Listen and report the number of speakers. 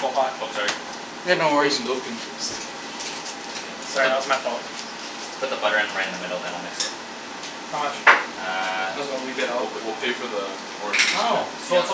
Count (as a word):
four